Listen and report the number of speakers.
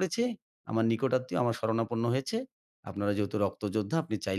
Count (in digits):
1